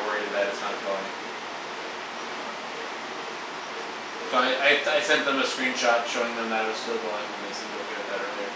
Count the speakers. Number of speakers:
1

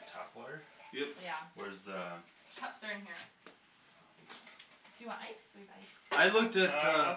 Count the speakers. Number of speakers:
3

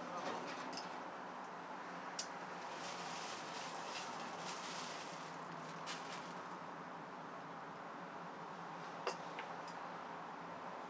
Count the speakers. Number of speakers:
1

